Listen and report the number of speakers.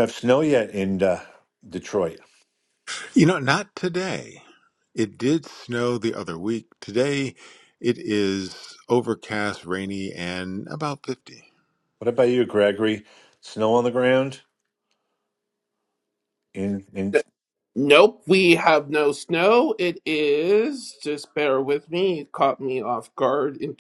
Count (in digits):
3